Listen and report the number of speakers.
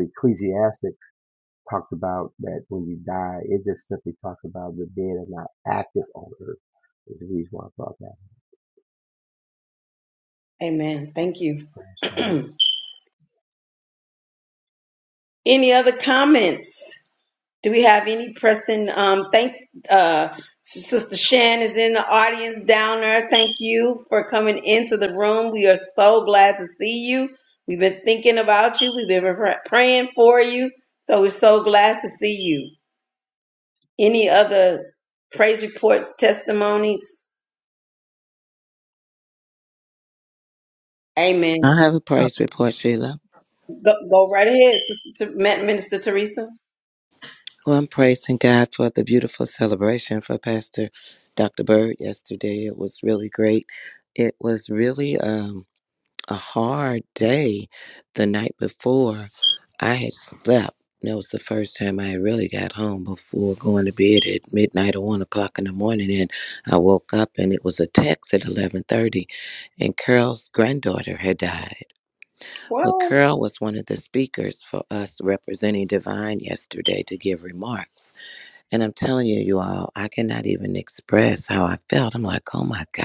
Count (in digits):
3